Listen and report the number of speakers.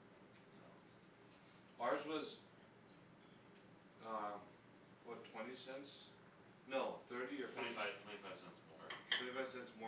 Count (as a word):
two